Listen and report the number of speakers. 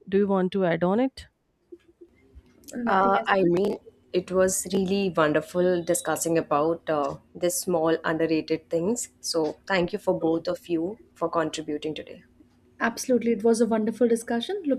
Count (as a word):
three